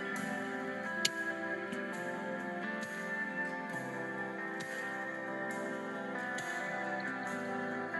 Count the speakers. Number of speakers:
zero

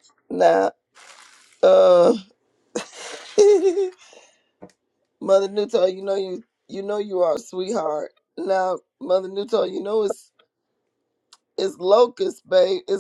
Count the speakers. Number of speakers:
one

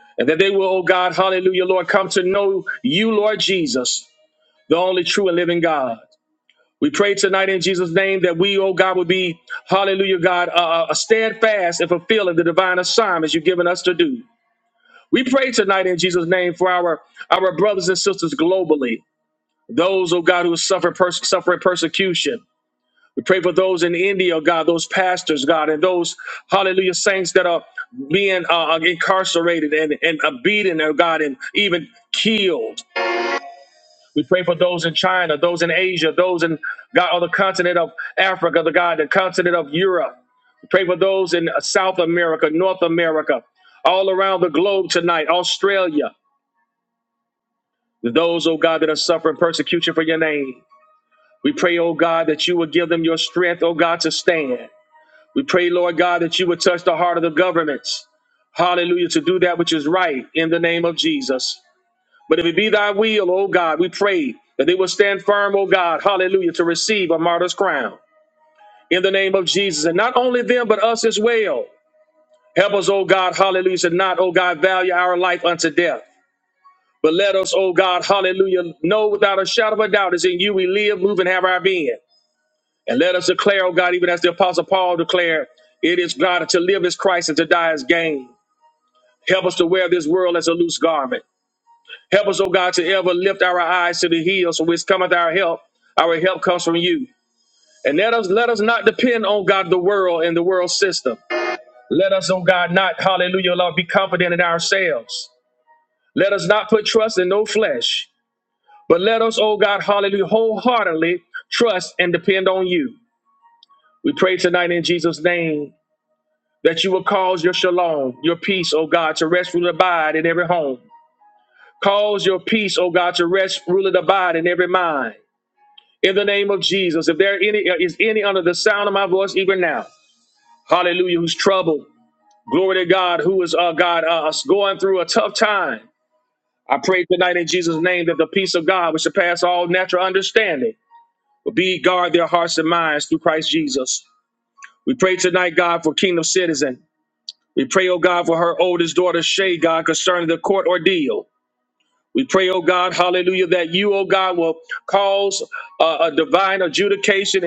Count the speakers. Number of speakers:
one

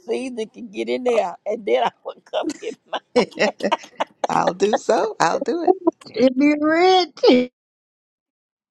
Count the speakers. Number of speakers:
three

